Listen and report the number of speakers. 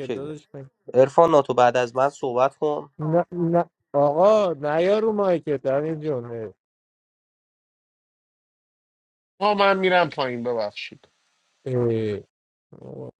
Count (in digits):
3